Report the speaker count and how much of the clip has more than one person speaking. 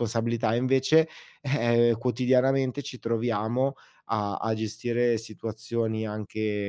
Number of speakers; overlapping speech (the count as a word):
one, no overlap